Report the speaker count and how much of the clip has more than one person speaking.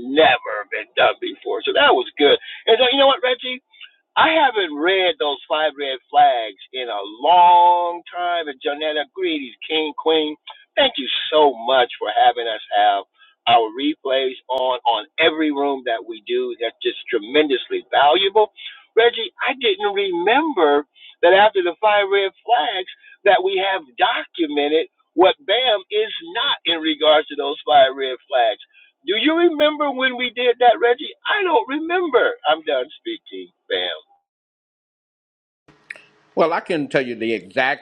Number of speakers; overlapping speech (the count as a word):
two, no overlap